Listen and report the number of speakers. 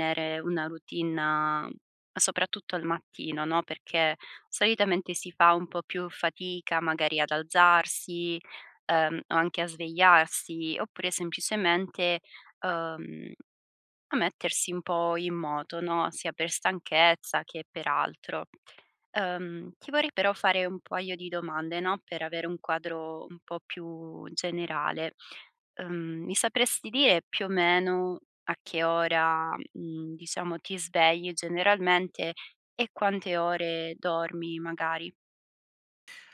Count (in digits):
1